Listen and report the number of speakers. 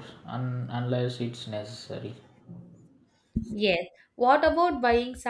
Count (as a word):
two